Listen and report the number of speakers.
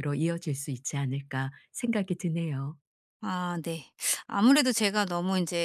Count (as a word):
two